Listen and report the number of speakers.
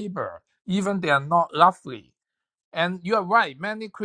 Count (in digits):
1